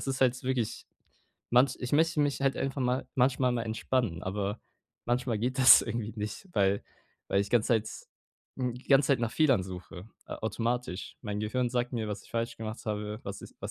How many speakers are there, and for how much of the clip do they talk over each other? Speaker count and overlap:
1, no overlap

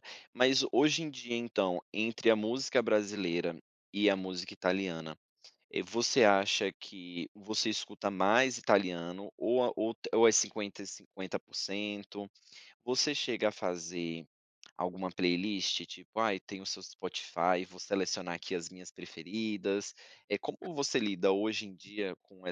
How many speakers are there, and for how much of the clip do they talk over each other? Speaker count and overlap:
1, no overlap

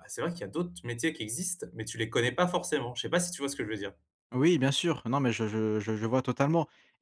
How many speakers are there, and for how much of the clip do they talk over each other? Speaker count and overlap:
2, no overlap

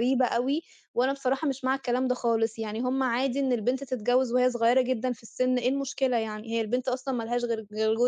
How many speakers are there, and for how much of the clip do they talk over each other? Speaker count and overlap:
1, no overlap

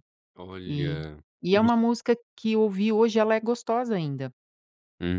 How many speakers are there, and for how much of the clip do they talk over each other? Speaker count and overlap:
2, about 9%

